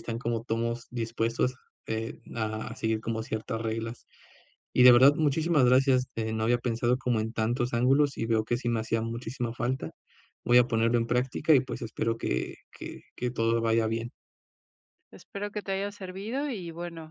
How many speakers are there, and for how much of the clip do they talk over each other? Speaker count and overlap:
2, no overlap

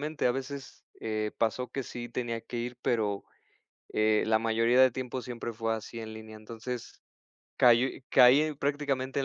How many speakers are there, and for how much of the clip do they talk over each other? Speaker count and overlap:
1, no overlap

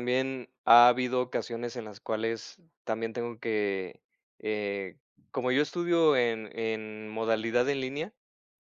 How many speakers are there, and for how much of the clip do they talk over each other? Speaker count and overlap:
1, no overlap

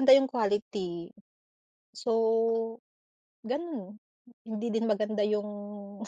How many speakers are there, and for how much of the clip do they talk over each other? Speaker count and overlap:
1, no overlap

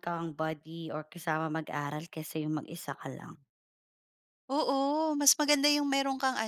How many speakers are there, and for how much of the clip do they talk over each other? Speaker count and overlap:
2, no overlap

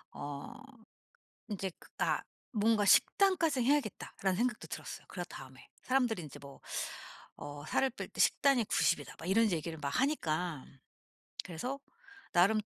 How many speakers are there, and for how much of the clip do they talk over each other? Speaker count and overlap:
1, no overlap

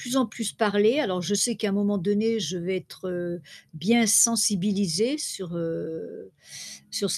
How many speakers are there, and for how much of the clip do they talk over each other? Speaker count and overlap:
1, no overlap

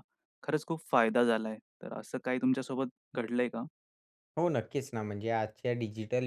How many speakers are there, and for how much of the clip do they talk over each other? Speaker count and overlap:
2, no overlap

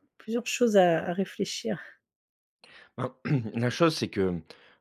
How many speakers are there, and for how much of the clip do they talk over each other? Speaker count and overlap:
2, no overlap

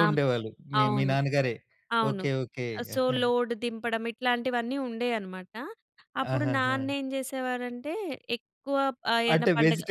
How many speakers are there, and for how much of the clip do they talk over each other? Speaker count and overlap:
2, about 23%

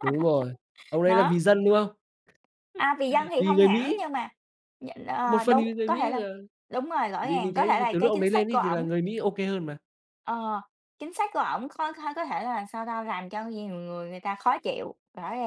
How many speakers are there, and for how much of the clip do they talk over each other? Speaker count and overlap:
2, about 23%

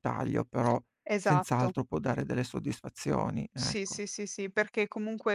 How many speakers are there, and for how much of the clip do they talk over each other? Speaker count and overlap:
2, about 15%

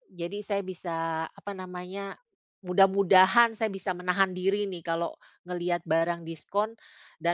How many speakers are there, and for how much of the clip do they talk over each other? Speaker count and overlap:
1, no overlap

